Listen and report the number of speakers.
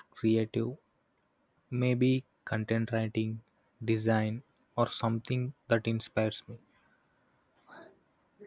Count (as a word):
one